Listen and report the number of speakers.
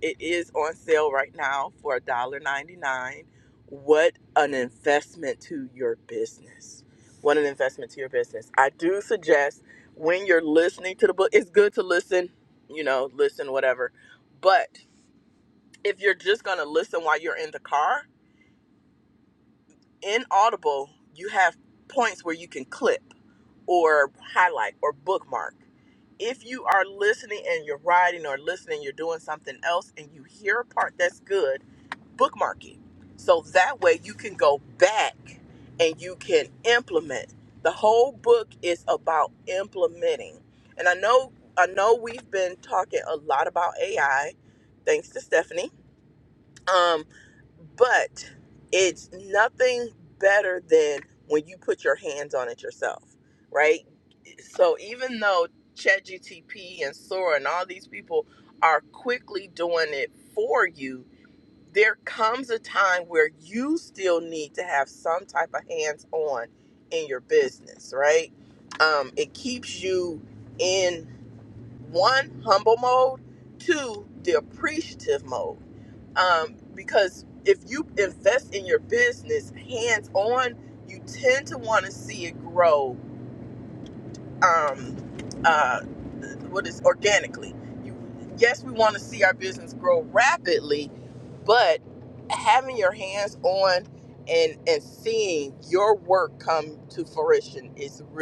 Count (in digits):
1